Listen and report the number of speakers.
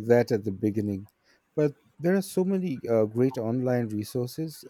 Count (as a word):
one